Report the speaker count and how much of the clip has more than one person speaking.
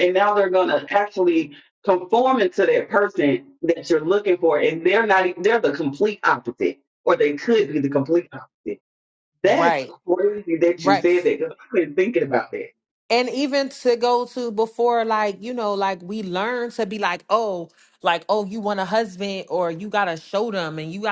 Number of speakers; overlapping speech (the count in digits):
2, about 3%